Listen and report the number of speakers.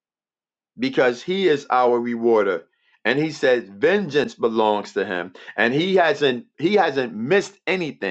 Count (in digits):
1